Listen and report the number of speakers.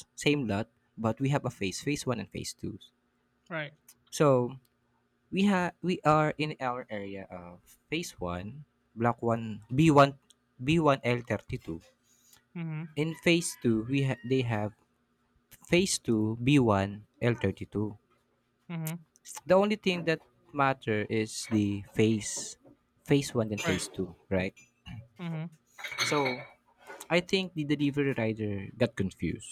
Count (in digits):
2